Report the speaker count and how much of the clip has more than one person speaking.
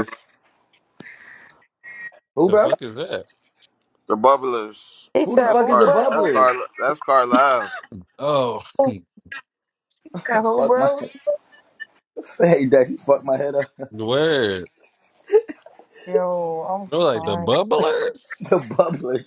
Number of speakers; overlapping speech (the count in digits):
4, about 13%